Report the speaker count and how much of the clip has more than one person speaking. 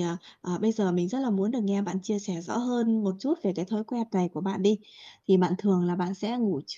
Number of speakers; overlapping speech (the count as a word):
one, no overlap